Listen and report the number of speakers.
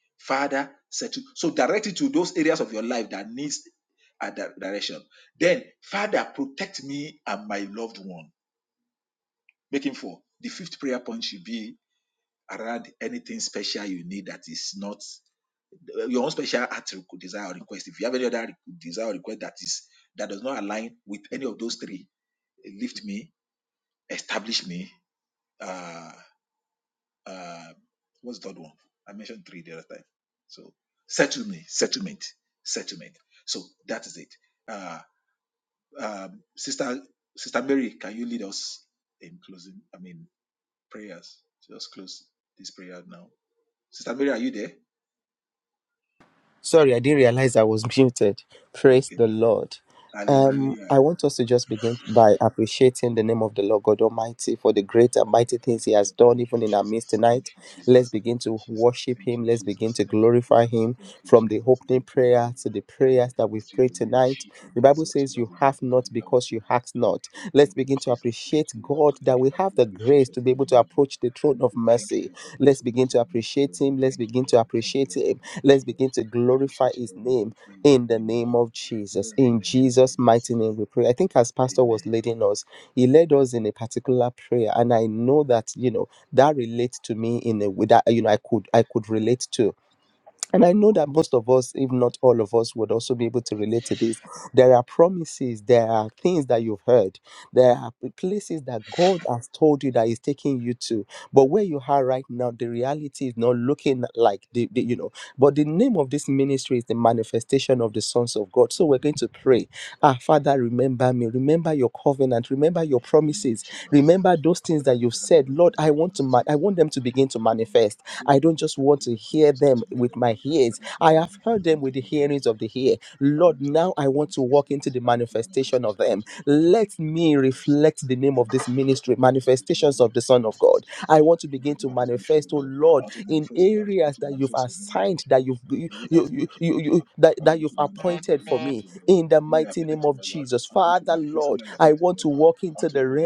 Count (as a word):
two